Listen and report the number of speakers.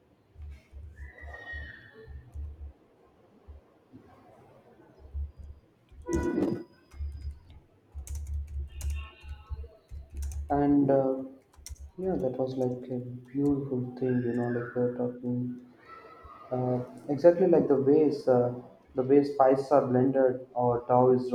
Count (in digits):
1